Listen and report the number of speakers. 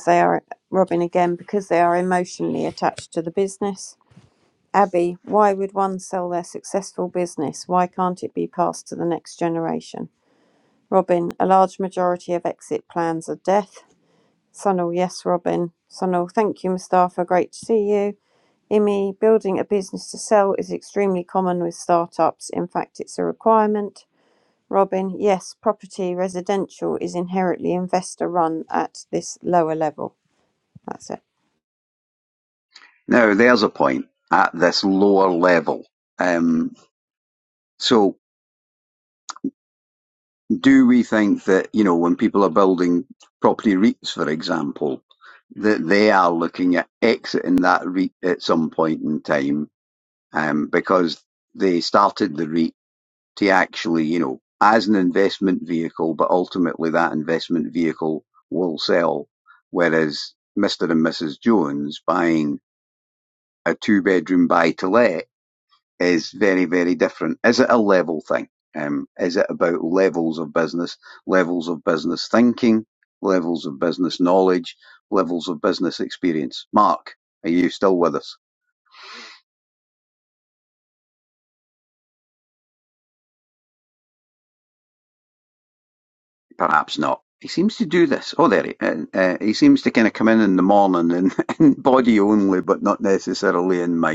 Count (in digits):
2